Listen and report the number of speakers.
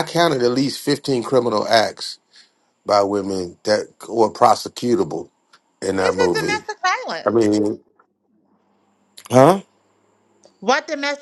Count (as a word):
two